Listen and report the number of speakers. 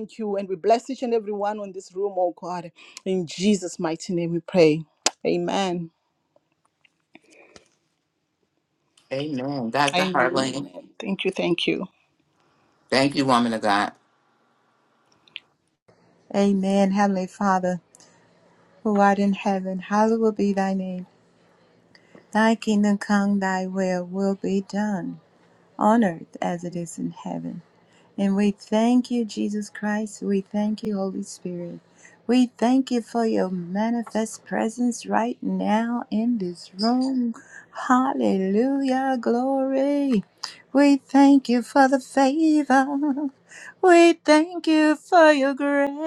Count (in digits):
3